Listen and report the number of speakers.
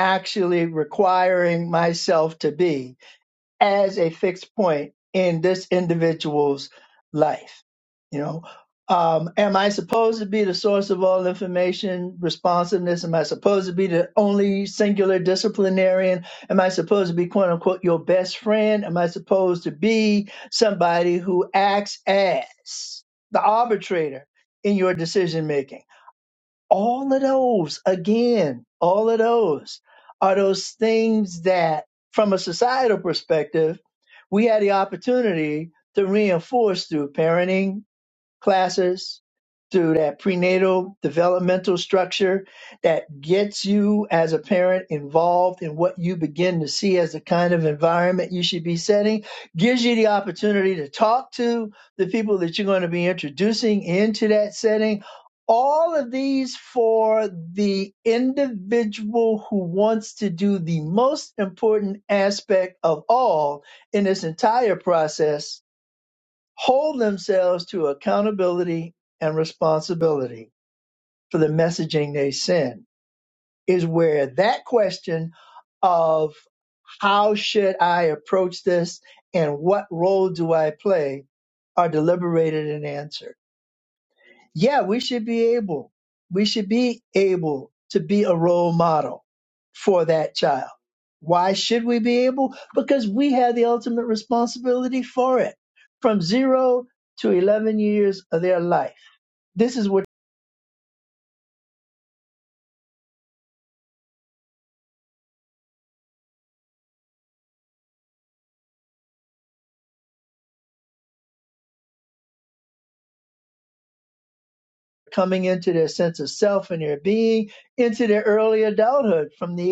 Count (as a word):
one